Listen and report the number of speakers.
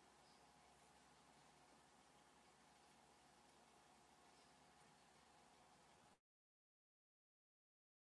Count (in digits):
0